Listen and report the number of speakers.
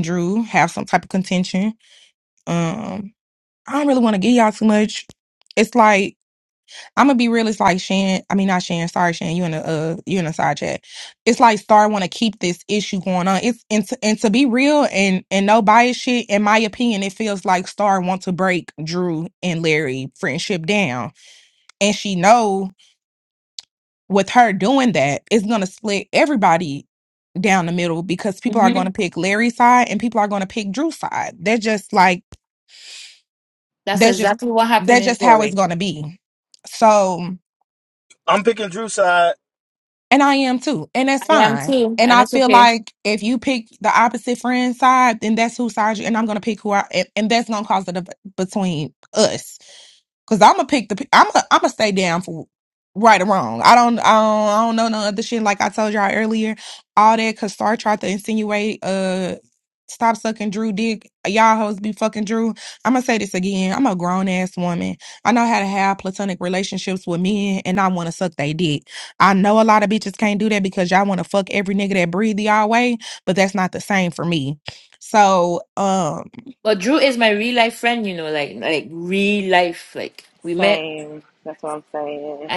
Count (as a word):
four